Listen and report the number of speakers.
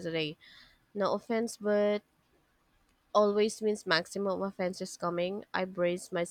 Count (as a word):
one